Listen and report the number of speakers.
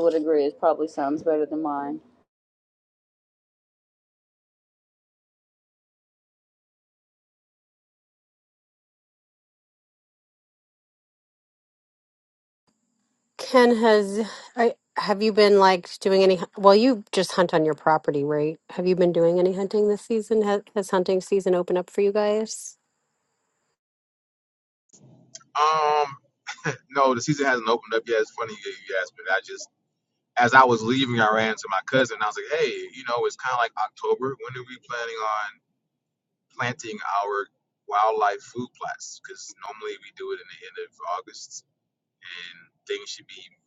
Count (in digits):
3